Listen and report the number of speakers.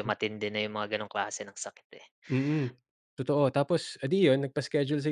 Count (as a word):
two